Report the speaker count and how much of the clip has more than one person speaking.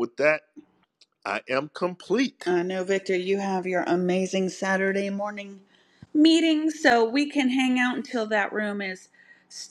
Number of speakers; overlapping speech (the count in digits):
2, under 1%